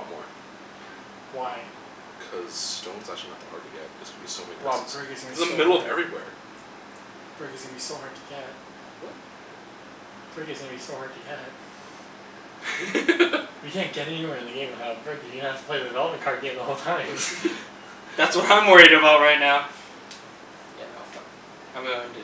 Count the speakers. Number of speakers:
3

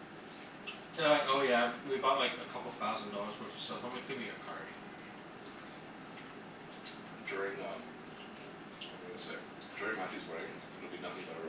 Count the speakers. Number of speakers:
2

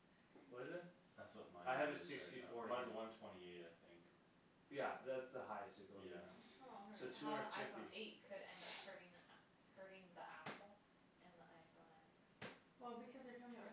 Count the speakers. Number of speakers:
4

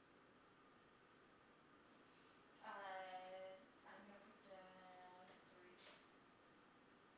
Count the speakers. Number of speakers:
1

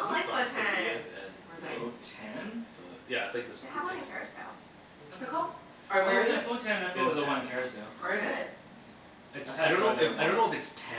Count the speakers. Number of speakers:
4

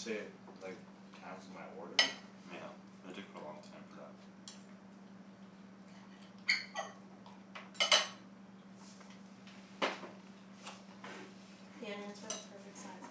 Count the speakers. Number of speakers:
3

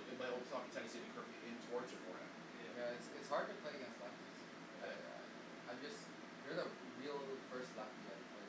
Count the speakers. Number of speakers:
2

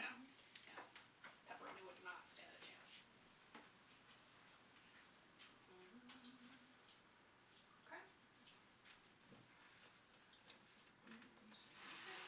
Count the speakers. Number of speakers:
2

